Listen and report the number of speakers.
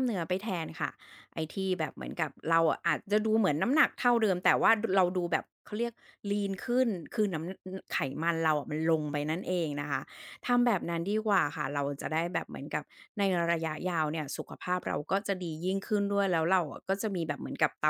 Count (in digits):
1